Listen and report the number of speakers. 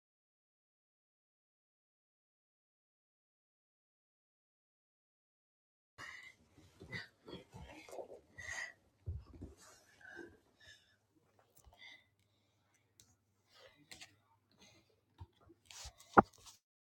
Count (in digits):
0